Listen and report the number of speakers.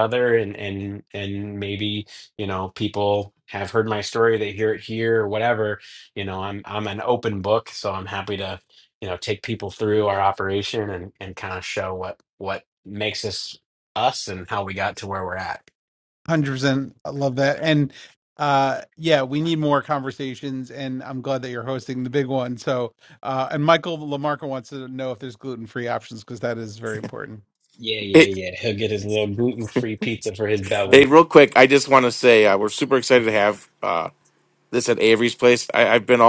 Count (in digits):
3